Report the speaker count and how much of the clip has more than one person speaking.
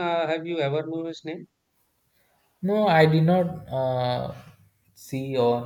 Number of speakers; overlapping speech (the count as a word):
two, no overlap